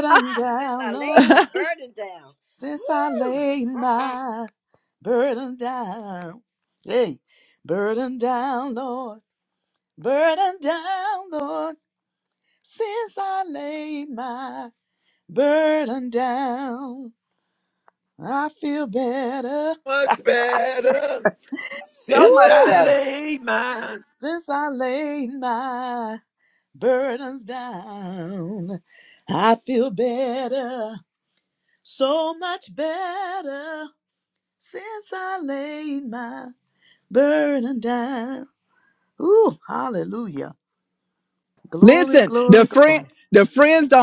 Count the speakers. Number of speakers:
4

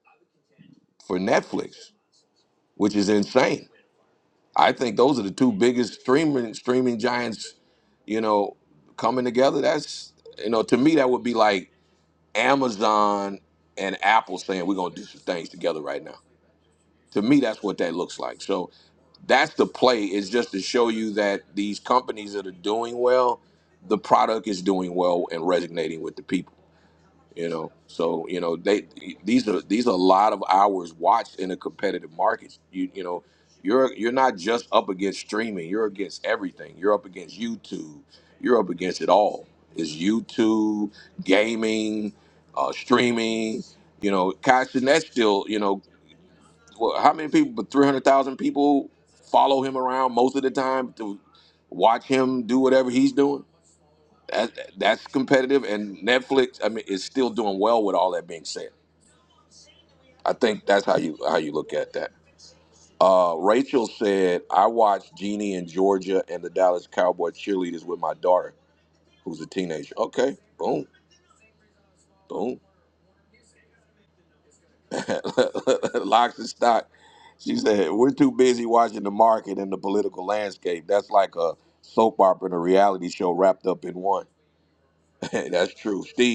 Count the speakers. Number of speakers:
1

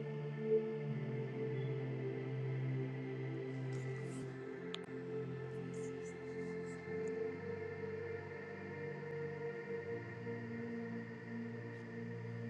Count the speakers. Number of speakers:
0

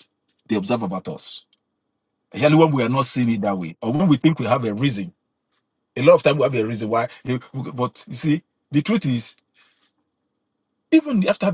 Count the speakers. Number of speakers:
1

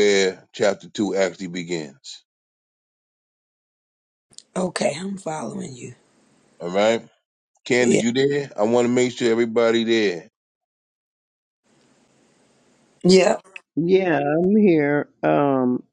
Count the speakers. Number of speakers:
3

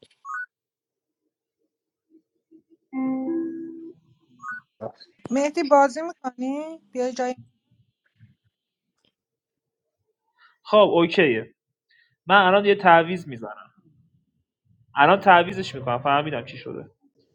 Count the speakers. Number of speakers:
2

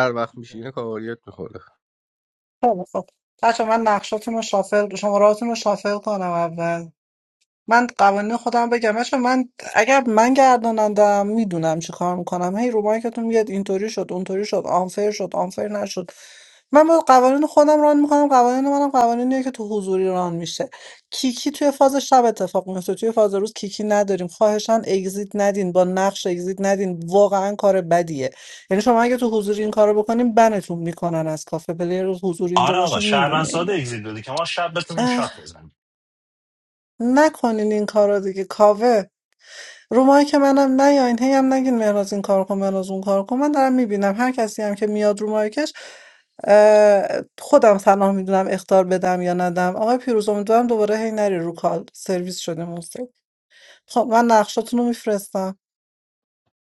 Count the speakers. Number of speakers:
3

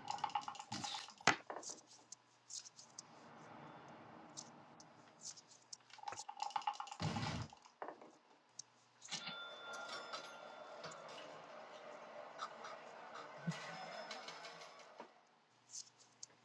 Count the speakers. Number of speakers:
0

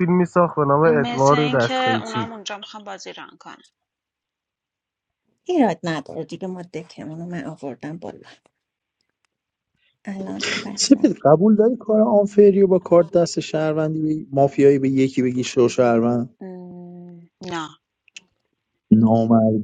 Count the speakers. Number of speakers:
4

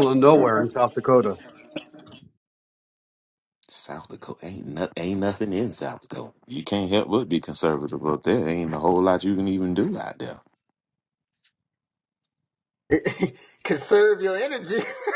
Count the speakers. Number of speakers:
3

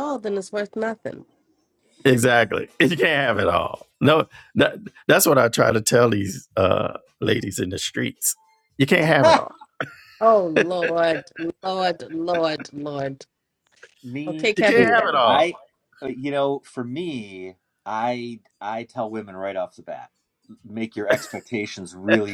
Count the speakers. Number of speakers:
3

